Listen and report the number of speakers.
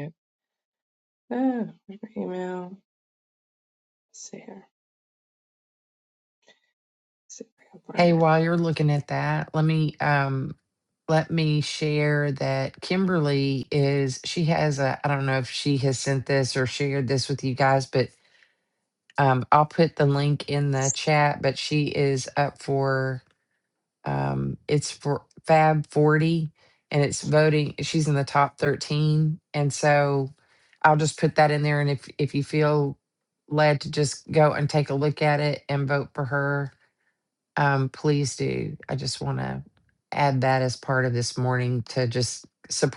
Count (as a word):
two